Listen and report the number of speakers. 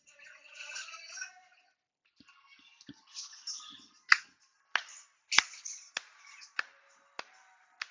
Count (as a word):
zero